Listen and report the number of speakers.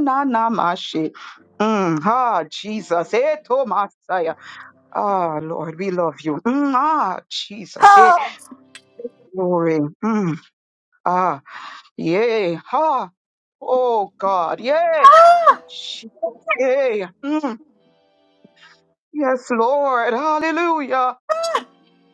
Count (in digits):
2